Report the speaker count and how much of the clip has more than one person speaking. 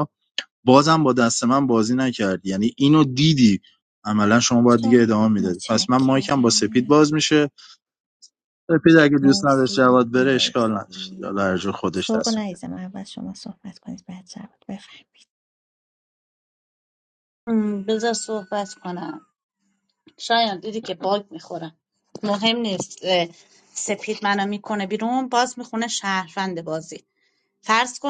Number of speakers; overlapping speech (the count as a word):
three, about 15%